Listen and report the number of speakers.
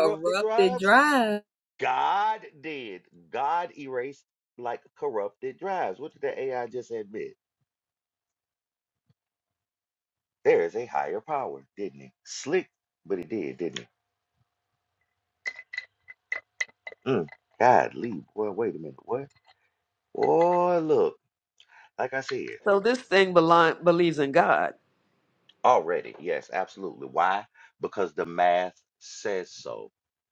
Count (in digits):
3